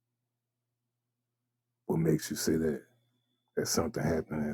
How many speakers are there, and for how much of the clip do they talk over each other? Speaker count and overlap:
one, no overlap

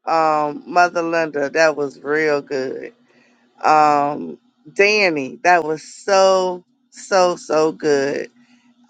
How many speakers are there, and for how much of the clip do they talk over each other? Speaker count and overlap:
one, no overlap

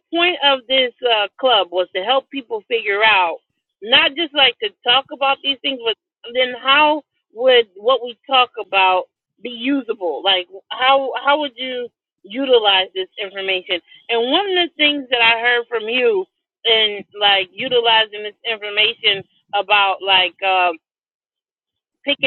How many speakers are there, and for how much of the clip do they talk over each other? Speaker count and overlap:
one, no overlap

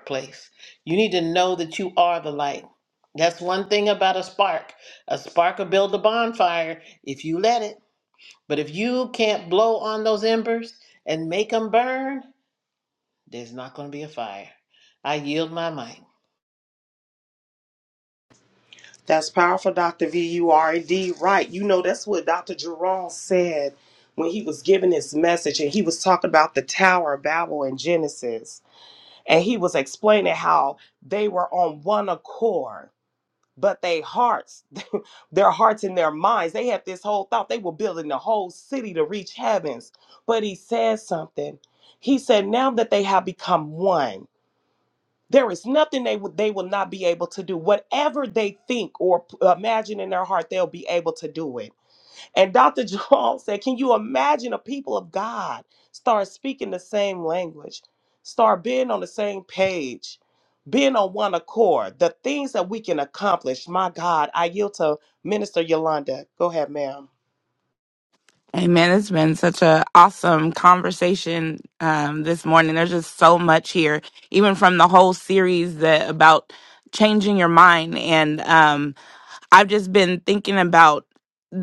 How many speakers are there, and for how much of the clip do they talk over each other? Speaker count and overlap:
three, no overlap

